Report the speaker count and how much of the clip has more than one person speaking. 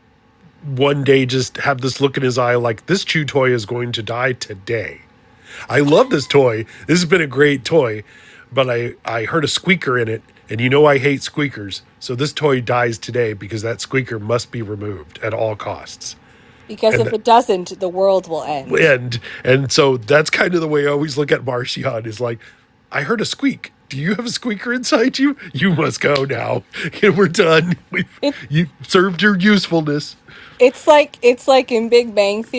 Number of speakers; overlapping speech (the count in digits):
2, about 1%